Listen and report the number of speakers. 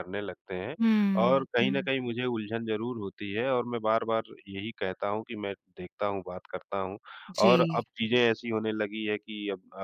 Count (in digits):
2